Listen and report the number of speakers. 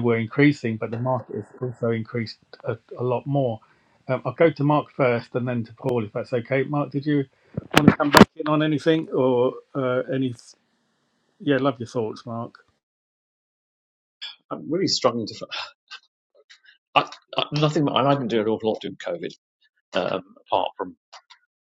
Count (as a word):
two